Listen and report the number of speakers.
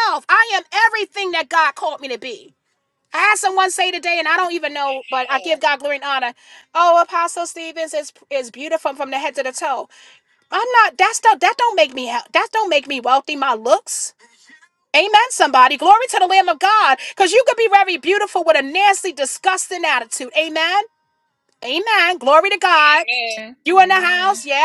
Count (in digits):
2